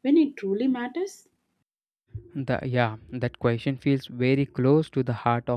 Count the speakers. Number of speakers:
two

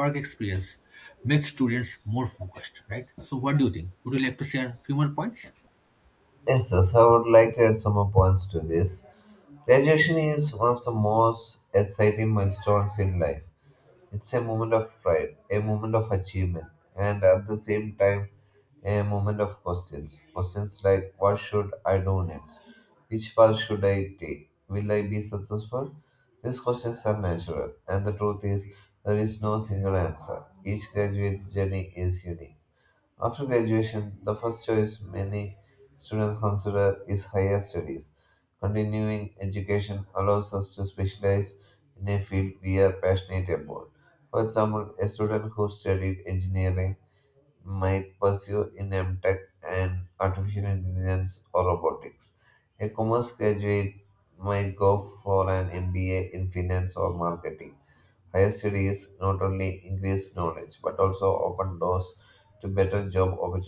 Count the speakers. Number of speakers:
two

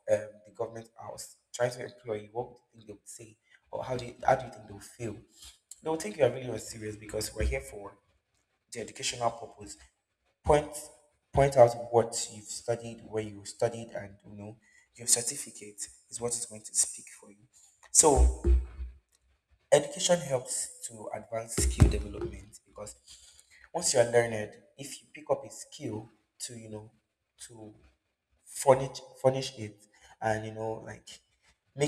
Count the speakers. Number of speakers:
one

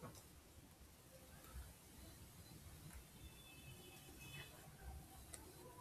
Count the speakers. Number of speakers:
zero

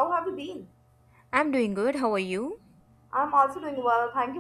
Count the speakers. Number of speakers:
two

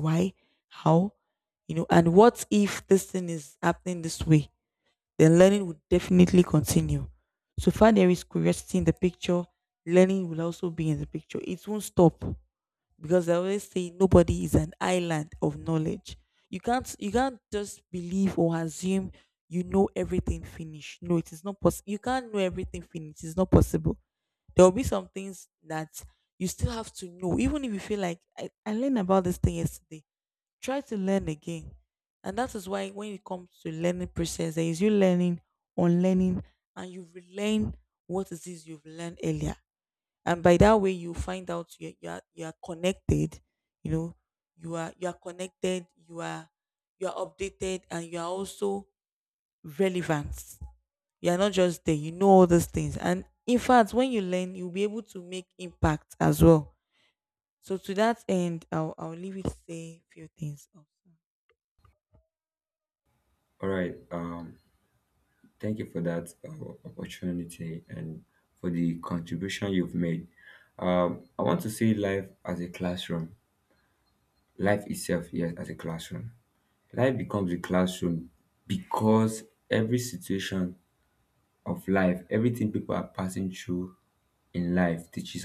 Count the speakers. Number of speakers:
two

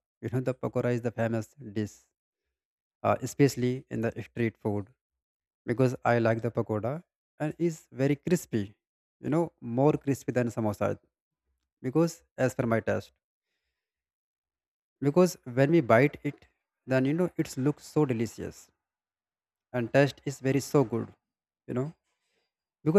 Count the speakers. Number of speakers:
one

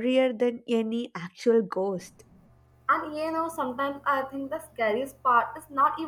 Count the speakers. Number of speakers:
two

